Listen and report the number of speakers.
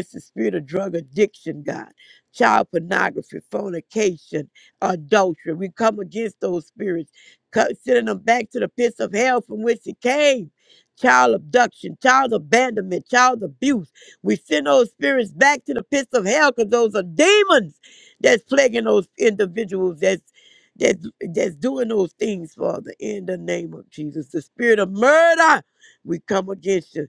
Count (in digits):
1